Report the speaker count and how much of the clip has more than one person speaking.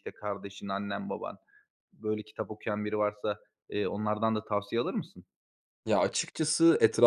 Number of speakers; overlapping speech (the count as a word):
two, no overlap